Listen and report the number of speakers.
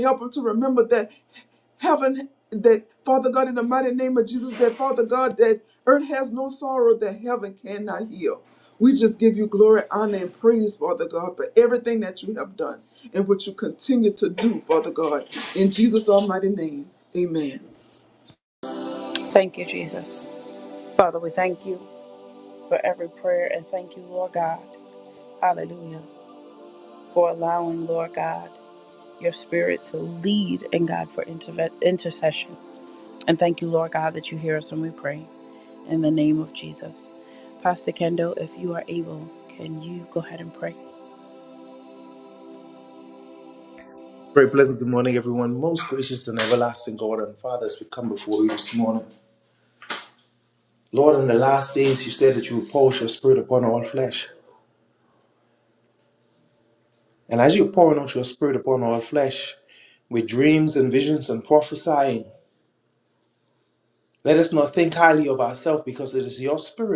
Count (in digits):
3